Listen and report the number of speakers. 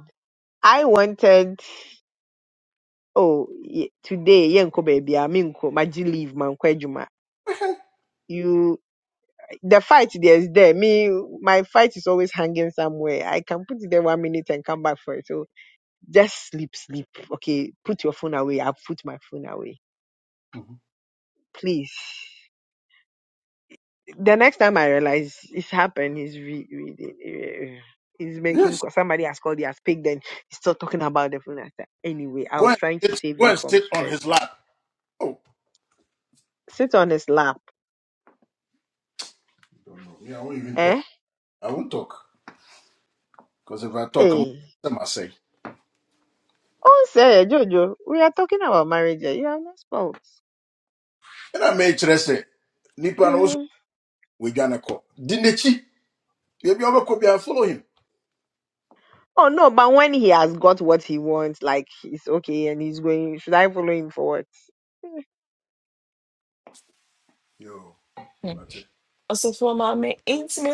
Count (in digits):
3